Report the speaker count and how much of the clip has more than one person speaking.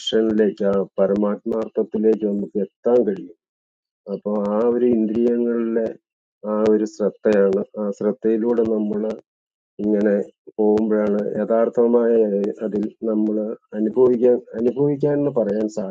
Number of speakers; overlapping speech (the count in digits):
1, no overlap